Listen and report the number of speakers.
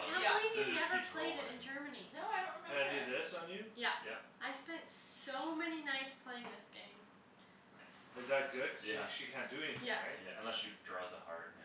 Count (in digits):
4